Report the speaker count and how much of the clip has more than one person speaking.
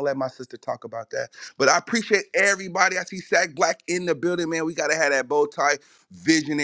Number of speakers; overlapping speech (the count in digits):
1, no overlap